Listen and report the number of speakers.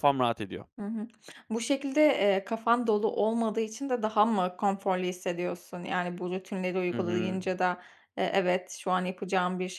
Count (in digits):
2